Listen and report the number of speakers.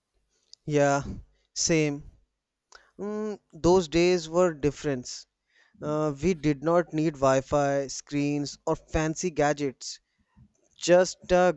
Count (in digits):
1